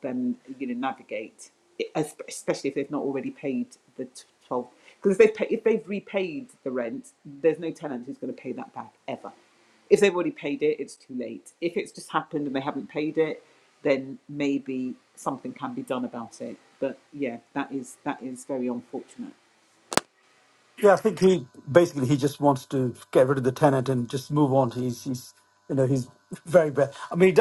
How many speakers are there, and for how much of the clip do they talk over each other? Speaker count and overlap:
two, no overlap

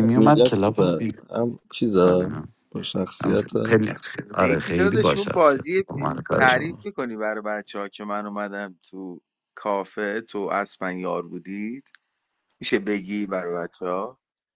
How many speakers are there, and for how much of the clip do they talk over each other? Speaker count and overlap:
three, about 21%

